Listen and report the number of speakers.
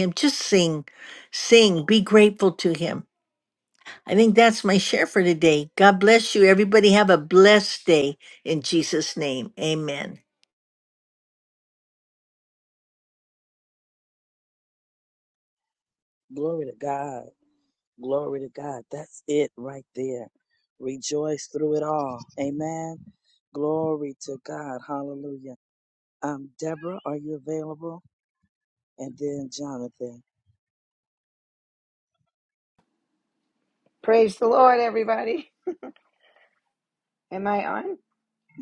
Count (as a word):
three